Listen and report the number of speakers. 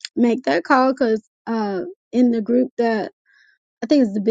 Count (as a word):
one